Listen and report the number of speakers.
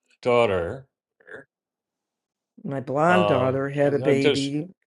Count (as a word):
two